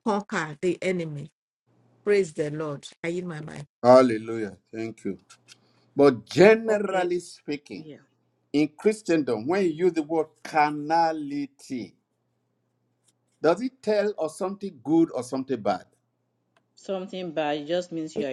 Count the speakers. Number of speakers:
three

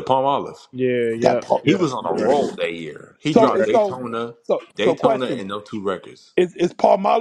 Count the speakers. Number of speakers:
three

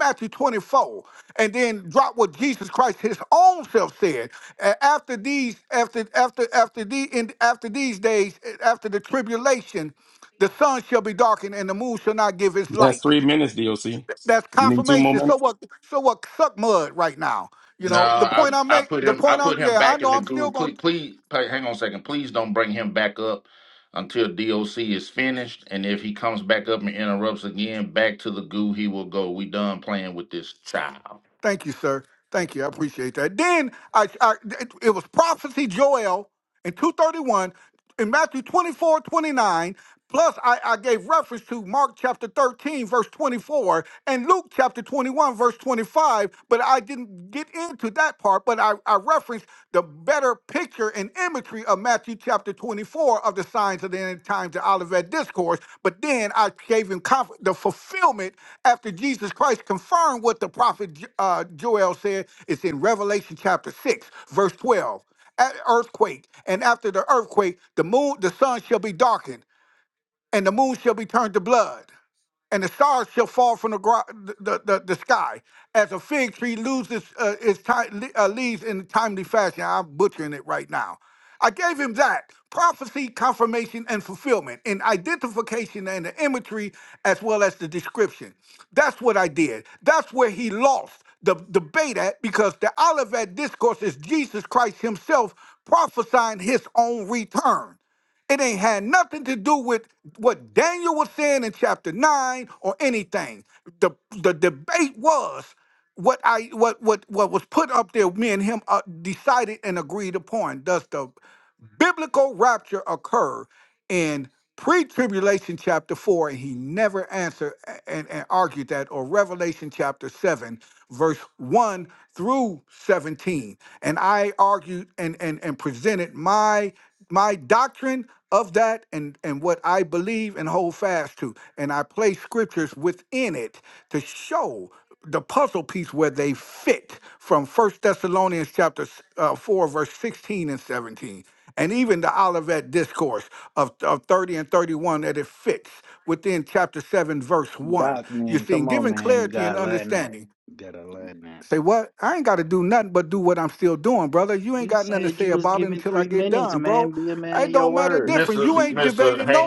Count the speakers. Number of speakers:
four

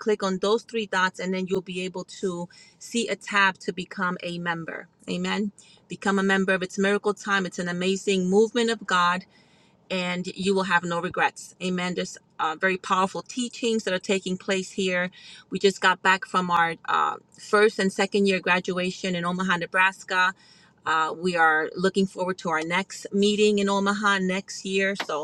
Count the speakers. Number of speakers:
one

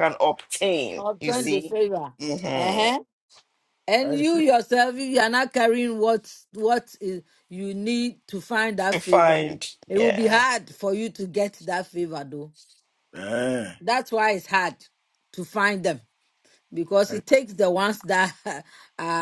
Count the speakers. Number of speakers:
three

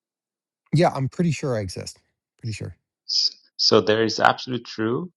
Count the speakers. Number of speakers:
two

